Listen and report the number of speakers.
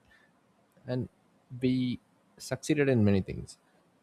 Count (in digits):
1